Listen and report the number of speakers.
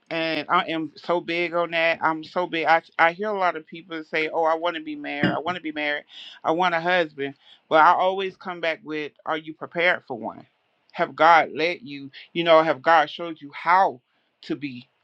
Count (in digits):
1